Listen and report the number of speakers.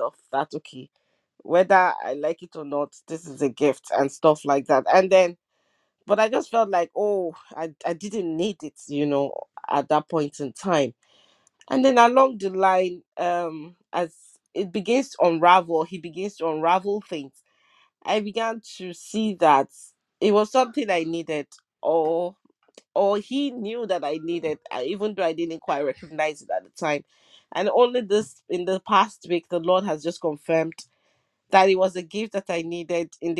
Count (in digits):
1